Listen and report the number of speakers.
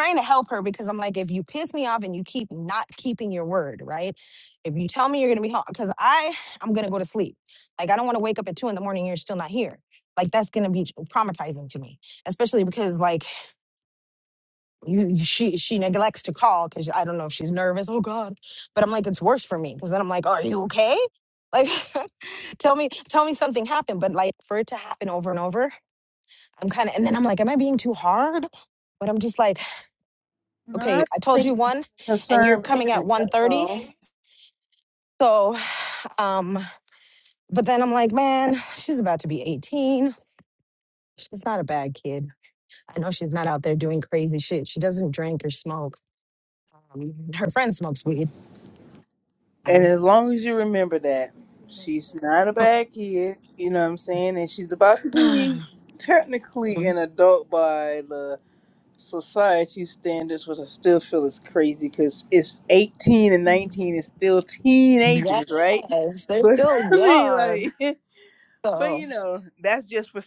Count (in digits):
2